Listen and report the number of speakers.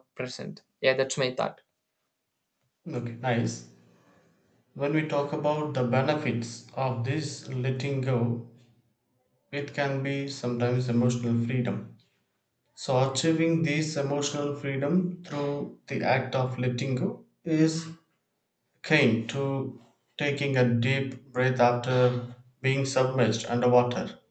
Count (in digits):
2